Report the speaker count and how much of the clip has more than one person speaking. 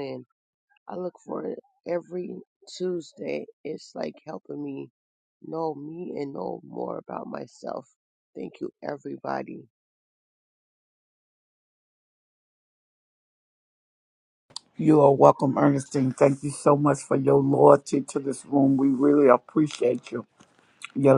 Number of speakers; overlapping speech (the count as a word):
two, no overlap